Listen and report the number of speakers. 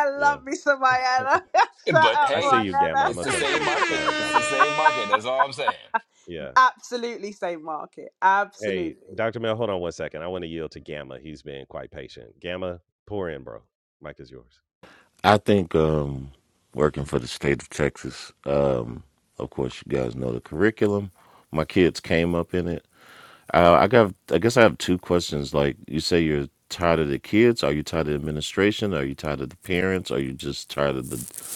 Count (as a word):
four